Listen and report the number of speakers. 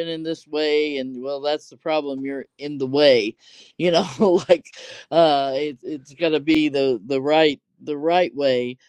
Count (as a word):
one